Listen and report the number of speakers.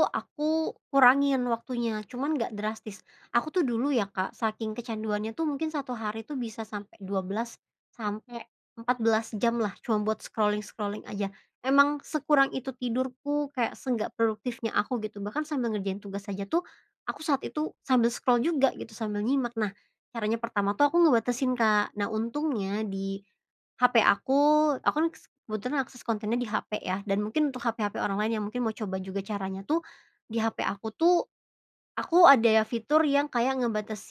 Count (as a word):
one